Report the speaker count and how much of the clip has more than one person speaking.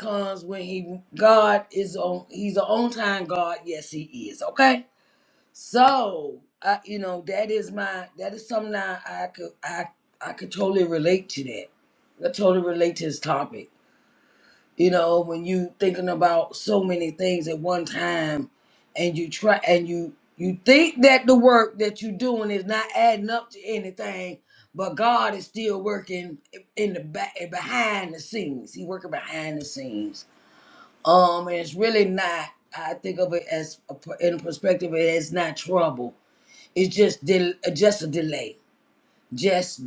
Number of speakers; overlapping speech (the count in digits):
1, no overlap